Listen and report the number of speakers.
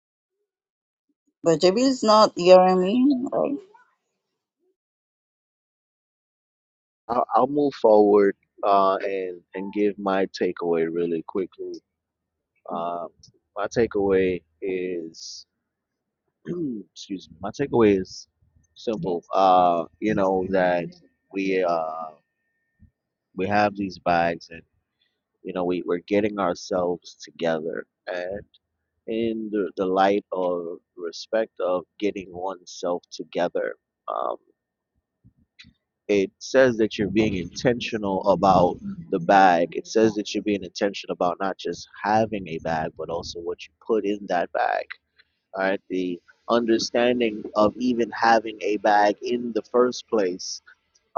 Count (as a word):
two